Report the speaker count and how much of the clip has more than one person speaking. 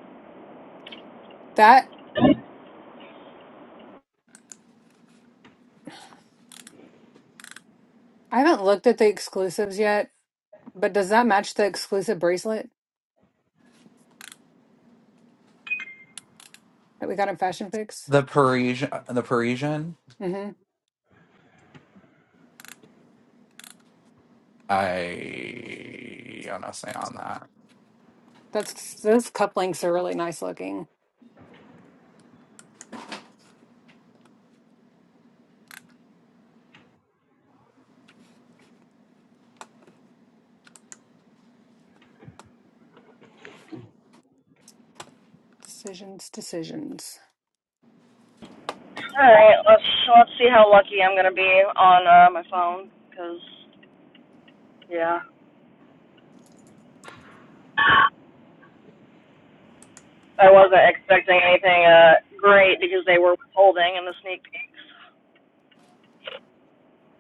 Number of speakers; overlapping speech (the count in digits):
3, no overlap